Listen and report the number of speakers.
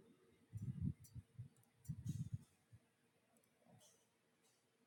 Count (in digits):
0